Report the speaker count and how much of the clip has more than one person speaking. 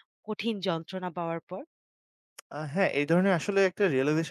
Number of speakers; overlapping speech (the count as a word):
two, no overlap